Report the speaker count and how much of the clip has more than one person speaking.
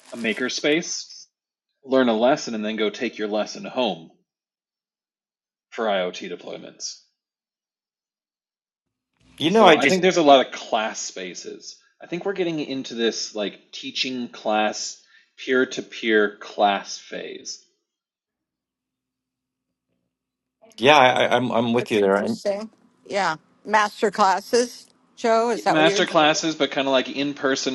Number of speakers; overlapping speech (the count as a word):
three, about 5%